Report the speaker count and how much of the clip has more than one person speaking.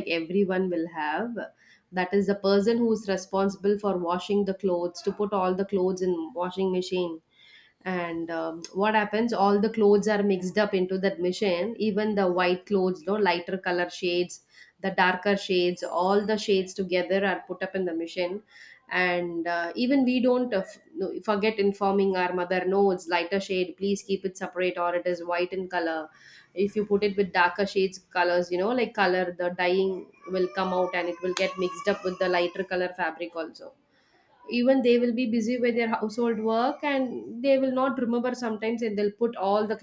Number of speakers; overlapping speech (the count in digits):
1, no overlap